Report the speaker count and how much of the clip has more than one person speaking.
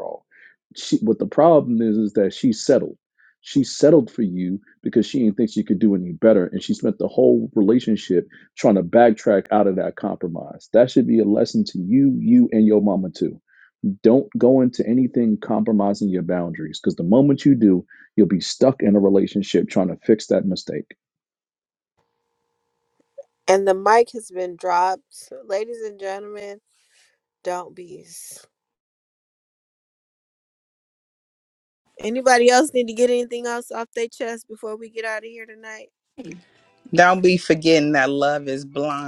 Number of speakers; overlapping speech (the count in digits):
3, no overlap